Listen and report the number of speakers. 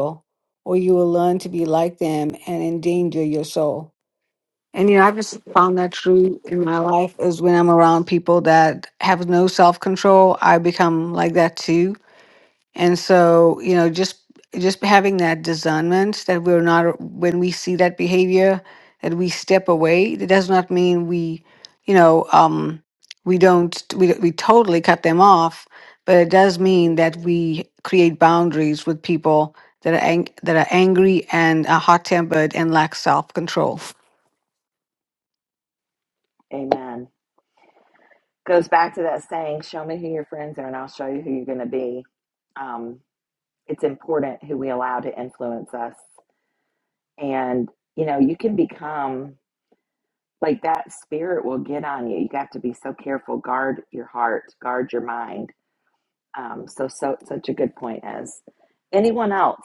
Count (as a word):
two